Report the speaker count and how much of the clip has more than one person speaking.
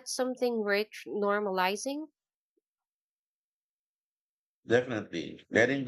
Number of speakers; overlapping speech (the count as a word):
two, no overlap